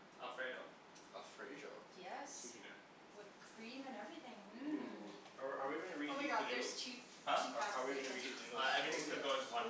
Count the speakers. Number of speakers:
4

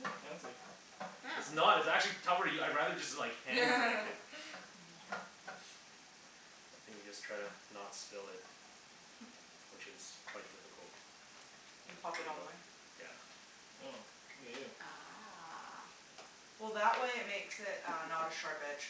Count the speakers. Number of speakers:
4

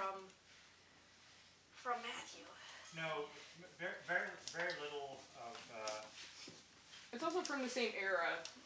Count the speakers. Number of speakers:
3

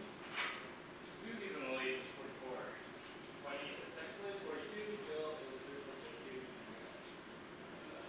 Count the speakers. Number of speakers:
1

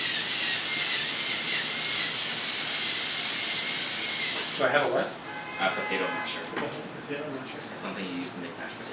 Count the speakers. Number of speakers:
2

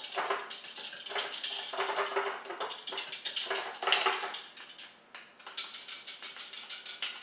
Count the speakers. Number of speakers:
0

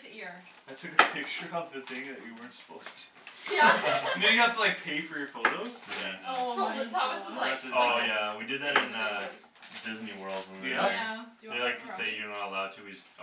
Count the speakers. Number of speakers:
4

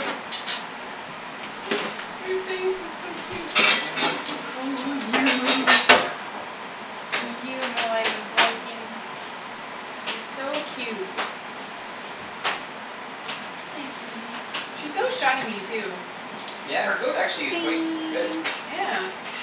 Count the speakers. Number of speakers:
2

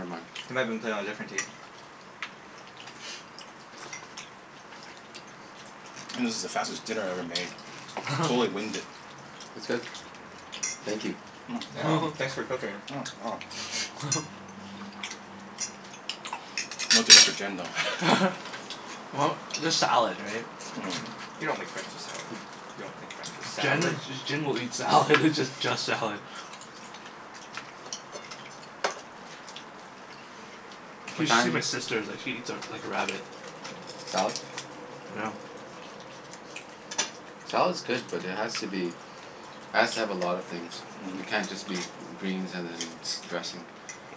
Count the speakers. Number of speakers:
4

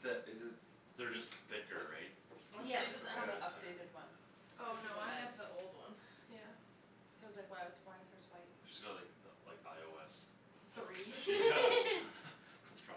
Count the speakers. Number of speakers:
4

